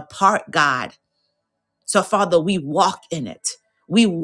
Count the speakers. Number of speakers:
1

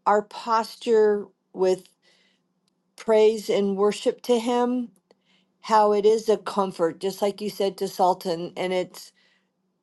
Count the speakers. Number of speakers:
1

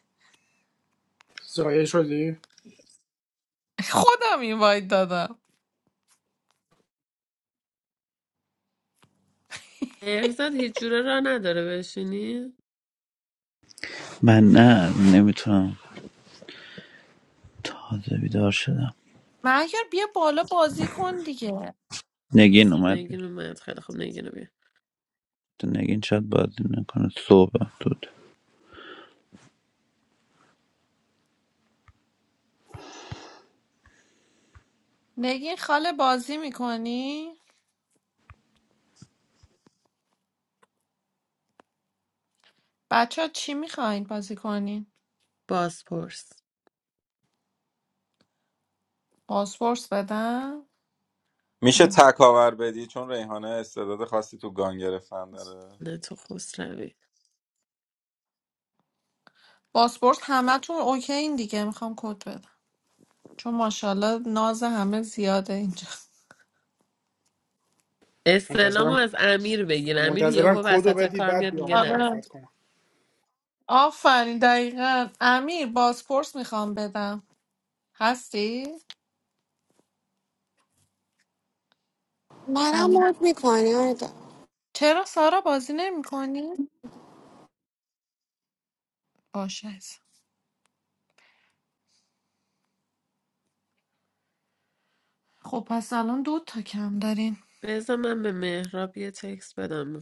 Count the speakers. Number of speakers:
6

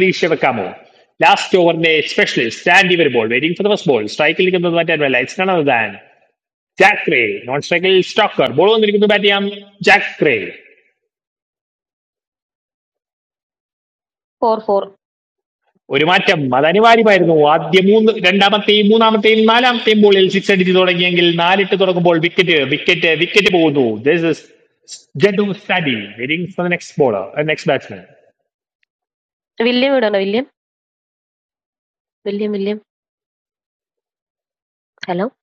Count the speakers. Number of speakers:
2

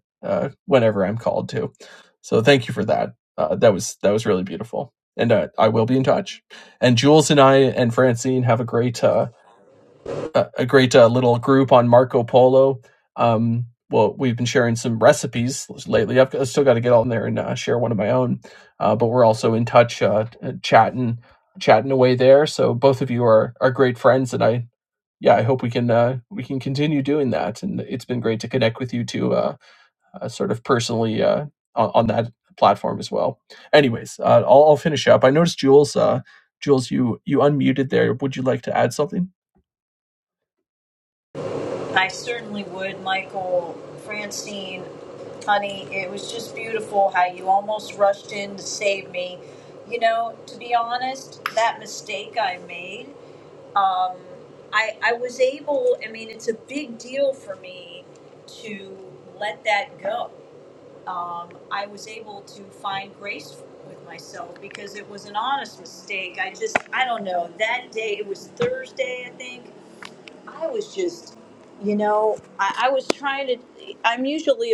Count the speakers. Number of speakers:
2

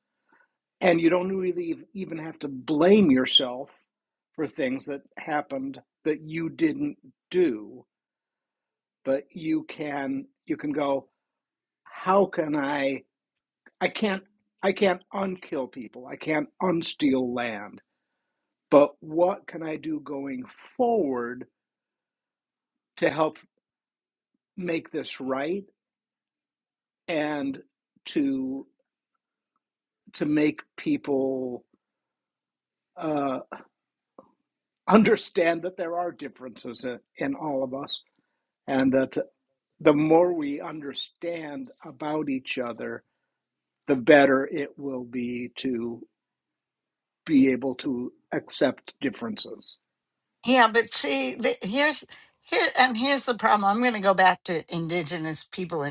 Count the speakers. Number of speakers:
2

